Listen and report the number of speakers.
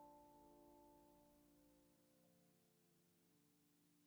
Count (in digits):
0